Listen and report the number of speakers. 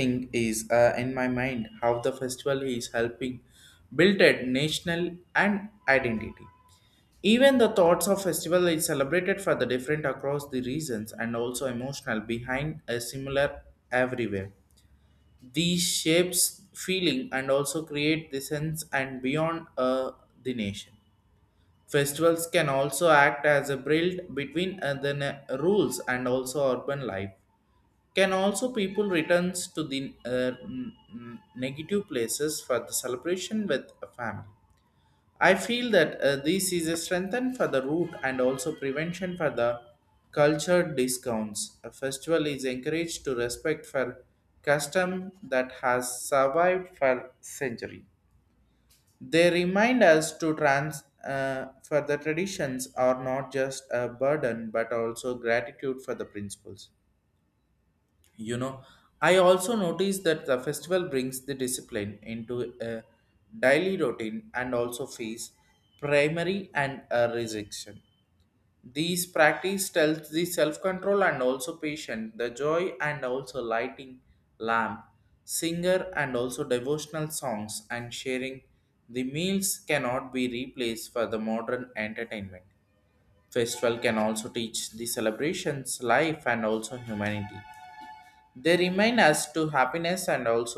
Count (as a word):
one